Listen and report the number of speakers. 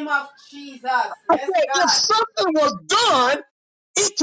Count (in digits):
2